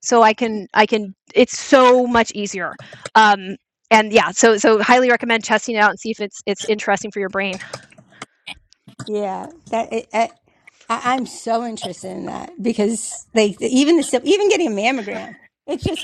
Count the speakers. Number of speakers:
two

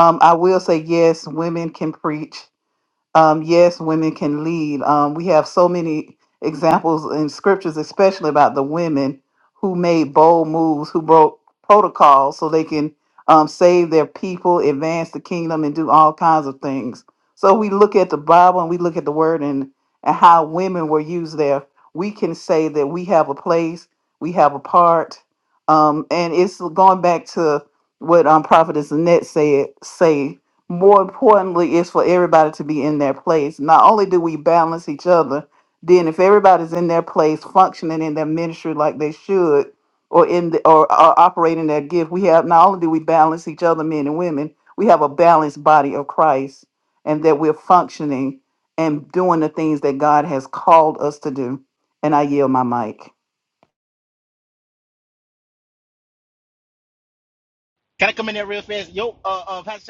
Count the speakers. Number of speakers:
two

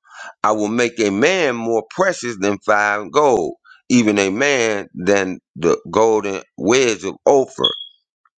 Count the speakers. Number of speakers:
one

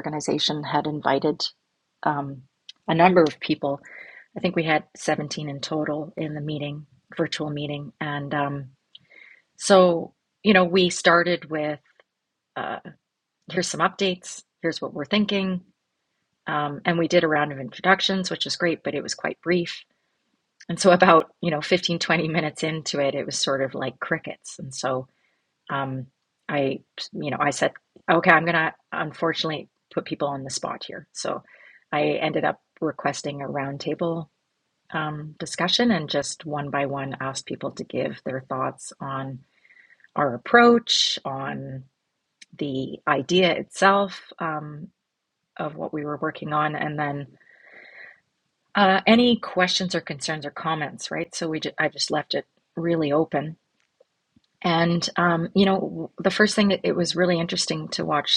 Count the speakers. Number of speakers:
one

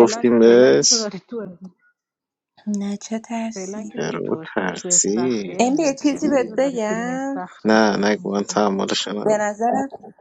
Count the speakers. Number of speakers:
three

